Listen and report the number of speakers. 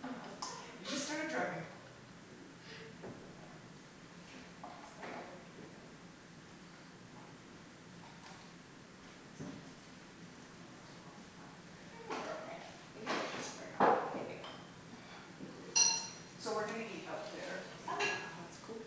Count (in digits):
2